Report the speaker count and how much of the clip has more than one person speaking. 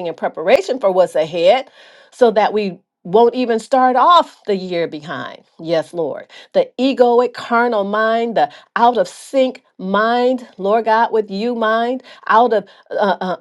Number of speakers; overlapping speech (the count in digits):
1, no overlap